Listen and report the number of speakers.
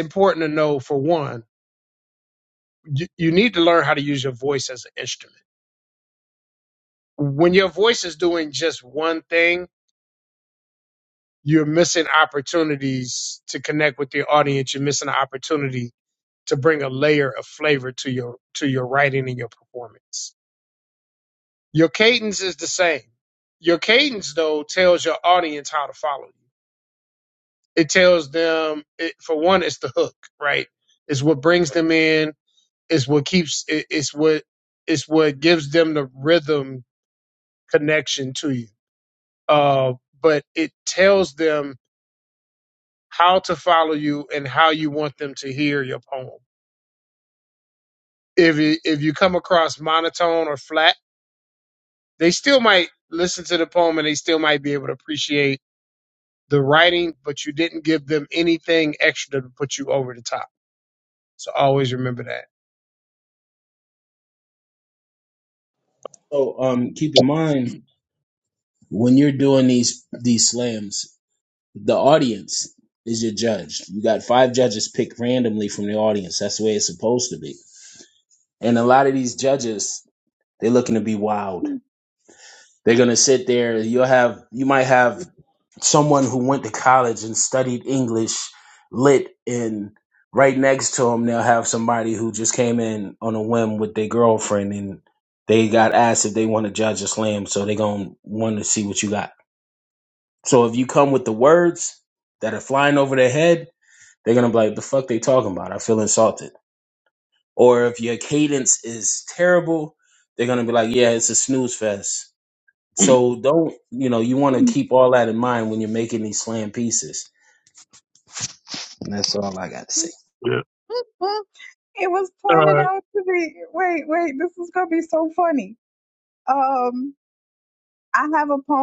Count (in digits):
3